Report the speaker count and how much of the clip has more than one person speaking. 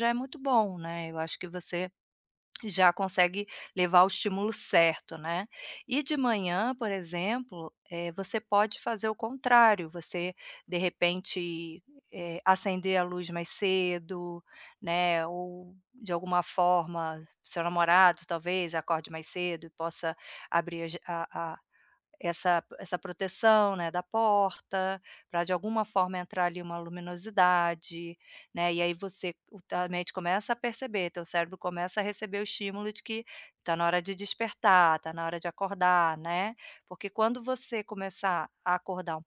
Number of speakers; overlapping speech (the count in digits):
1, no overlap